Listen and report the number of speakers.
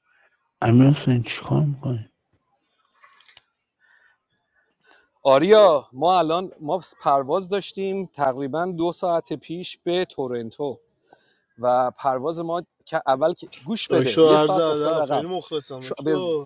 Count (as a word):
three